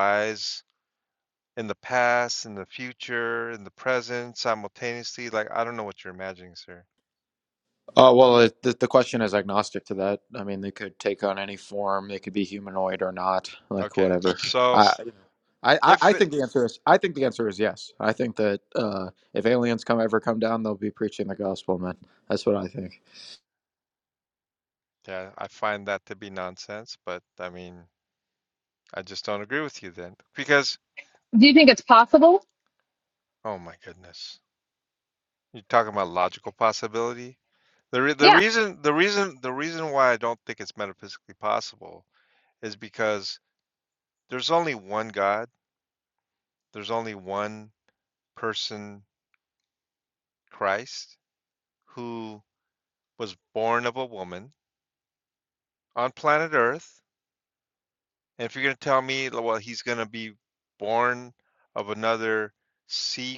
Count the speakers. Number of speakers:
3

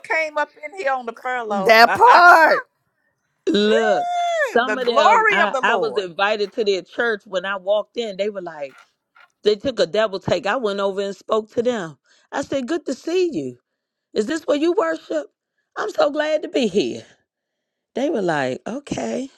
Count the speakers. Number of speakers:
3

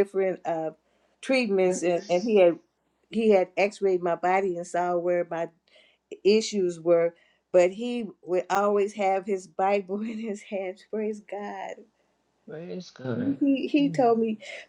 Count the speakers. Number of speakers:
2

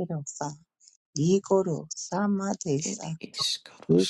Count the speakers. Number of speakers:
2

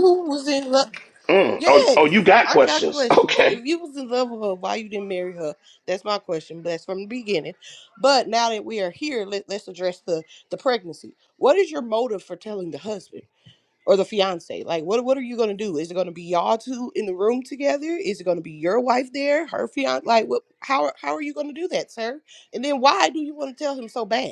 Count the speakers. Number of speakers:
2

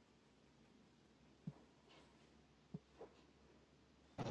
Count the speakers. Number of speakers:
0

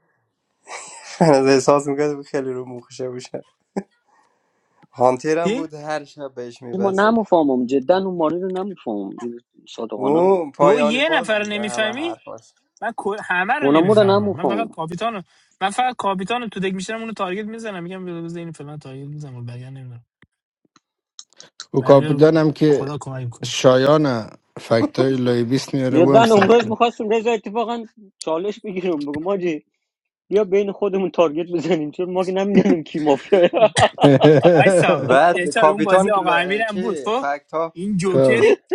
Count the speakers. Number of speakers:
4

